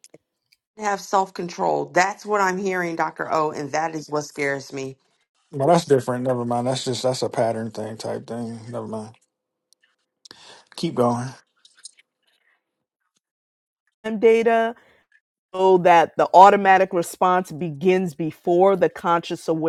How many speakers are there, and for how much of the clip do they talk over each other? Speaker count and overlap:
3, no overlap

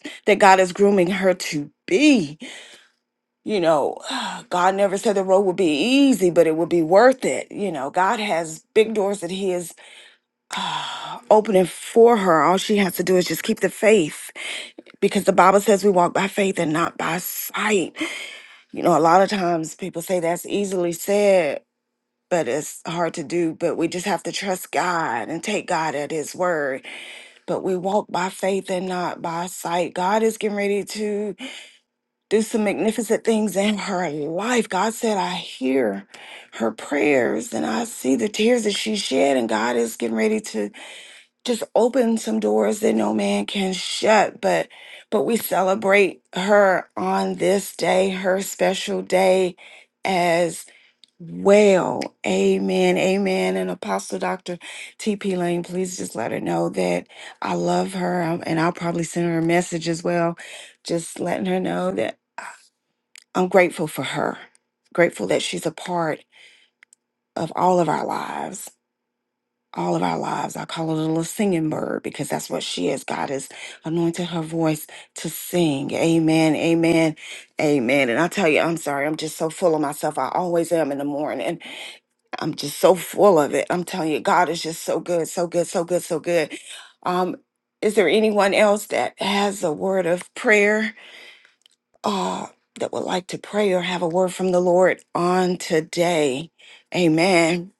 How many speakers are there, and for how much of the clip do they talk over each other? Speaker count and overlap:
1, no overlap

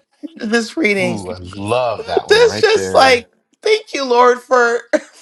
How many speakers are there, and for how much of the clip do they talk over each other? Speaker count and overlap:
2, about 21%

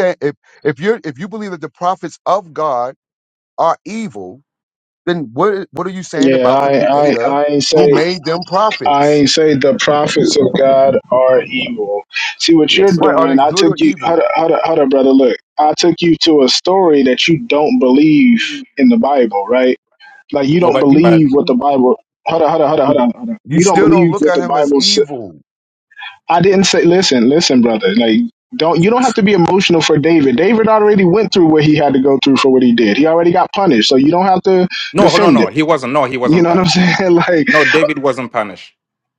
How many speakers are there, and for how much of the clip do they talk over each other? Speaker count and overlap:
3, about 17%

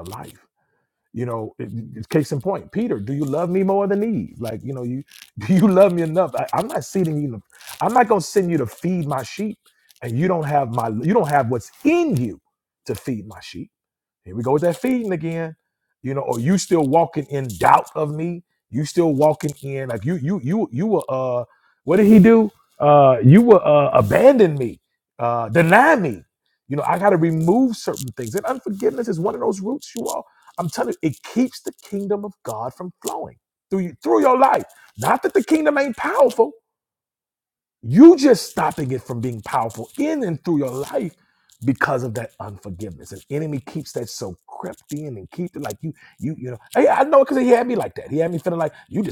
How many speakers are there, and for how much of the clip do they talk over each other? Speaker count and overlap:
1, no overlap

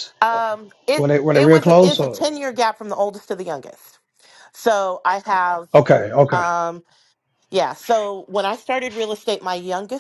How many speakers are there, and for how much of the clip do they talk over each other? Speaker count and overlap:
2, about 14%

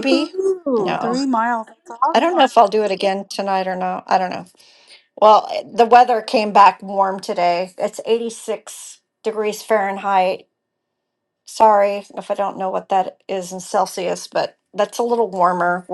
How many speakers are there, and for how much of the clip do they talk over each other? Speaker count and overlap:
2, about 6%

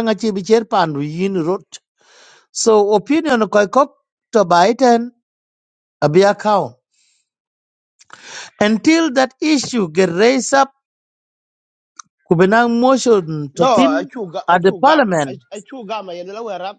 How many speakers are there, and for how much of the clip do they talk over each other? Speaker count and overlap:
2, about 7%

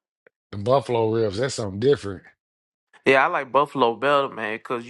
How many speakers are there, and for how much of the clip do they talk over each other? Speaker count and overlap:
2, no overlap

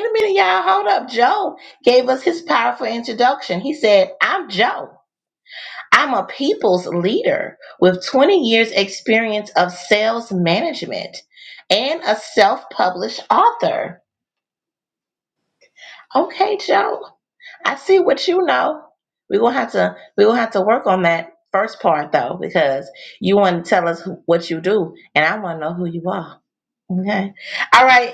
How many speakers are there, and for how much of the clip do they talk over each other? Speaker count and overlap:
1, no overlap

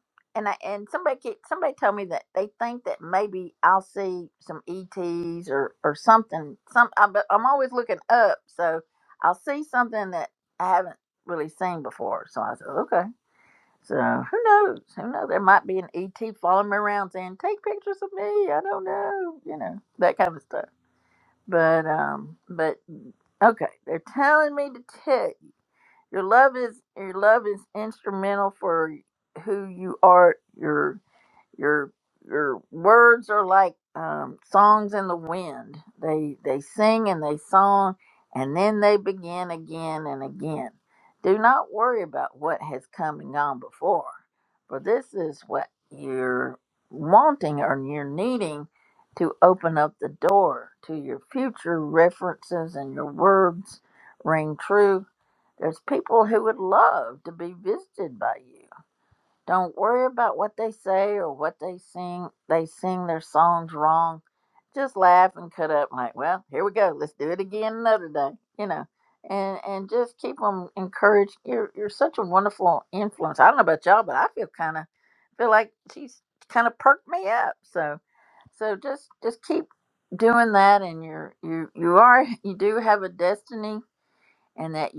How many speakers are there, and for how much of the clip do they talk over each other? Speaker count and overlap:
1, no overlap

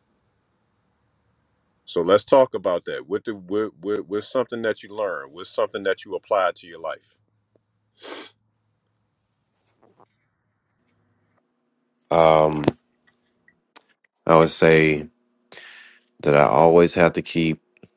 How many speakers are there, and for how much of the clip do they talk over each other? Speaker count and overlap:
2, no overlap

